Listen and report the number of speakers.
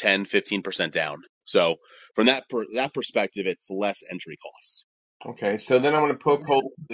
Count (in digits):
2